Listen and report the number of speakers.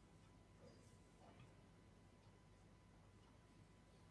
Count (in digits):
0